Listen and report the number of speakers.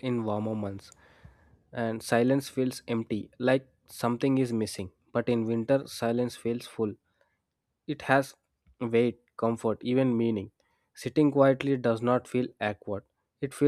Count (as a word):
one